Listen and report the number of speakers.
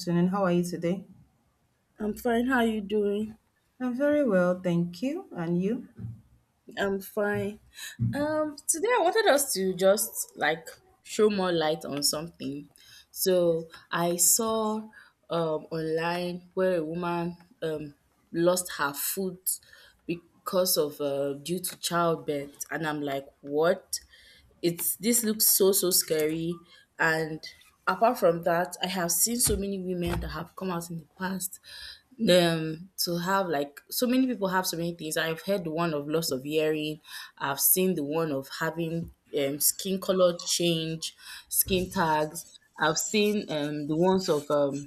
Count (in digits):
2